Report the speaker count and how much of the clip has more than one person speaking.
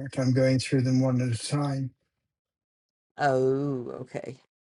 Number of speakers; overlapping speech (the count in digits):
2, no overlap